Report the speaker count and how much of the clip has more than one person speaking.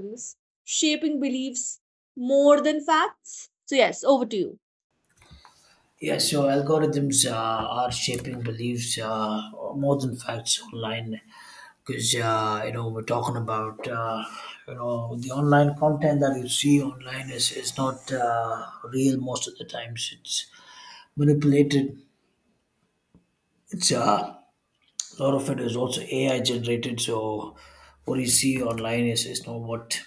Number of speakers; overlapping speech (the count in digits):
2, no overlap